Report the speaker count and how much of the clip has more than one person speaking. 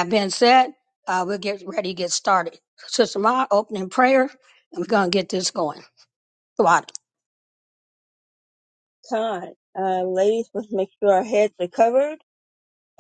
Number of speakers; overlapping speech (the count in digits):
2, no overlap